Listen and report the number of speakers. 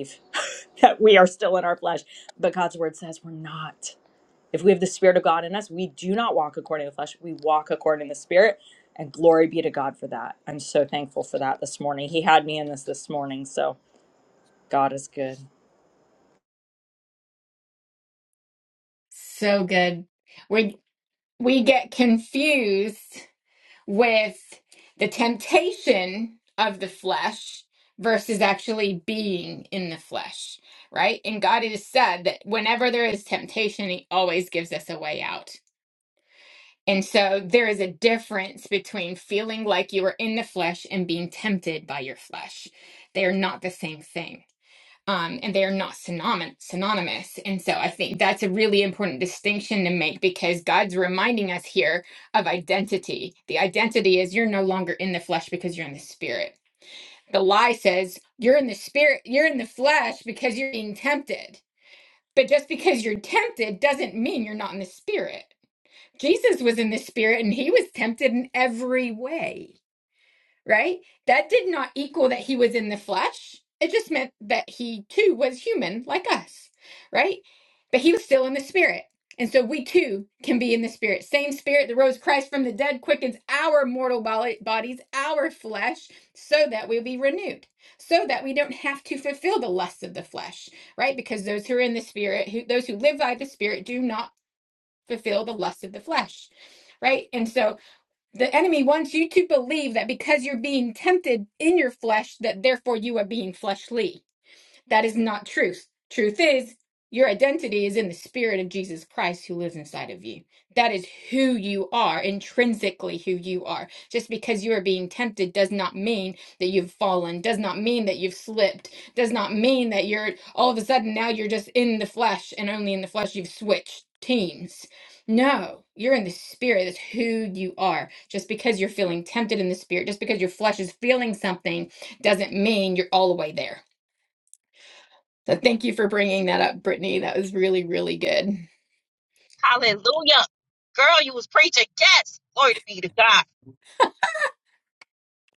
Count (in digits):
3